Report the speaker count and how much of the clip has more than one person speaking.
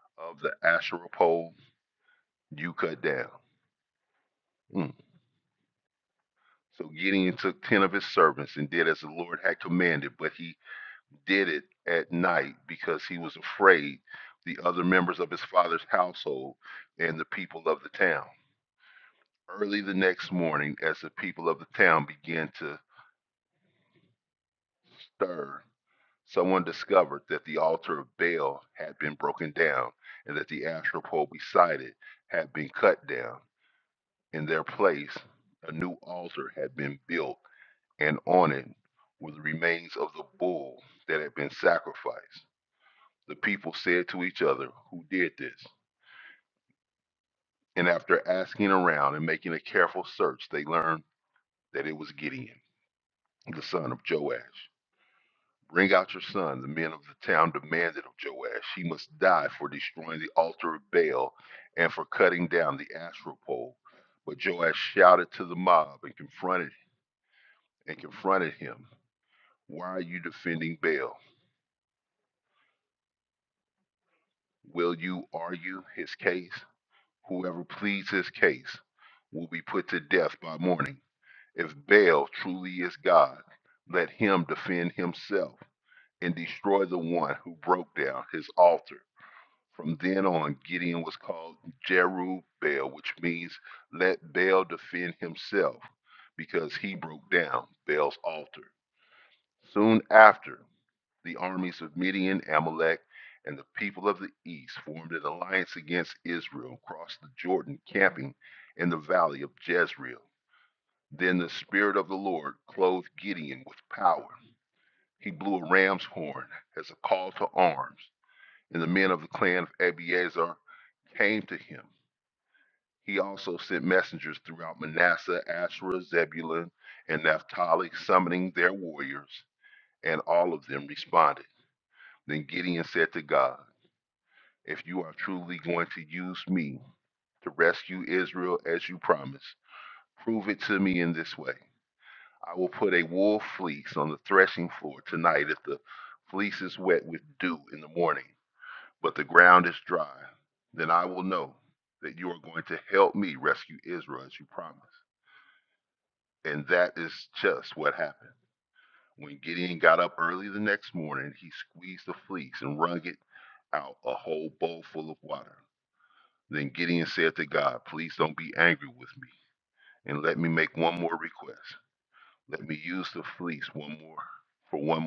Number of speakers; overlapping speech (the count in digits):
1, no overlap